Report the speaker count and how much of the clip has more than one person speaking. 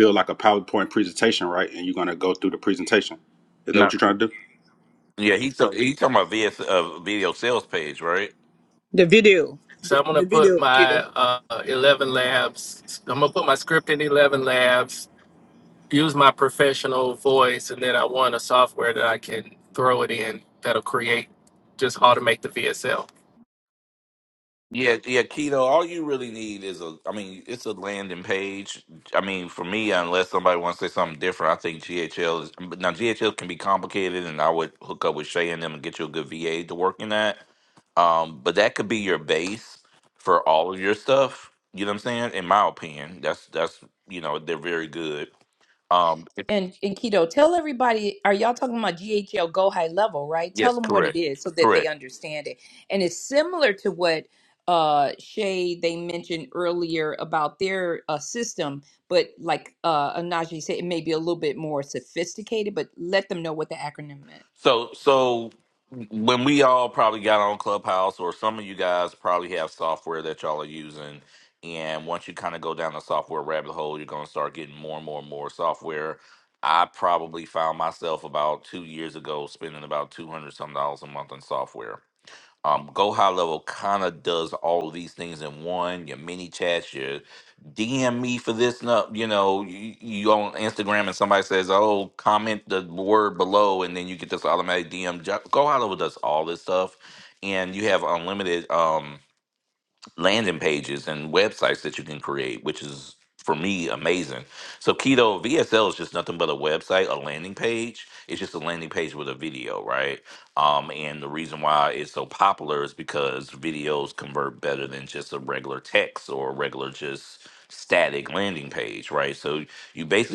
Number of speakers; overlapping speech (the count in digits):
5, about 2%